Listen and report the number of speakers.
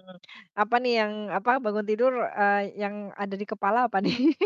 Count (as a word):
one